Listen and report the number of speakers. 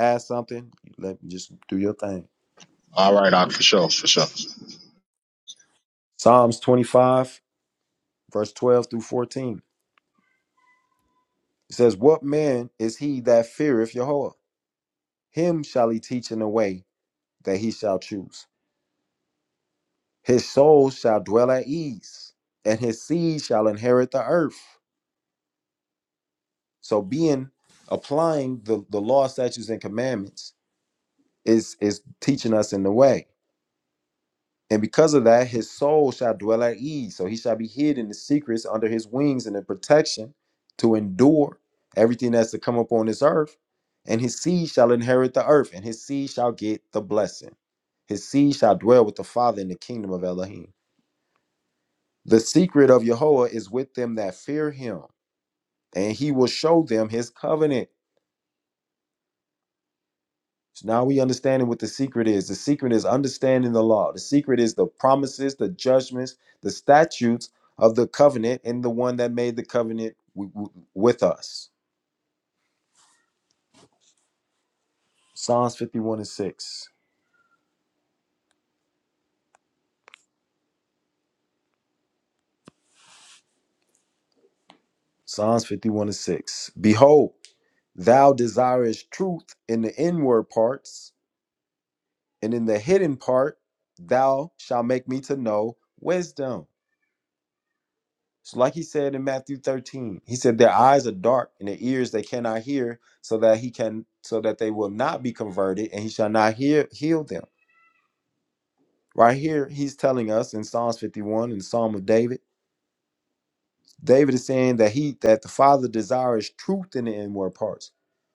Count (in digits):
2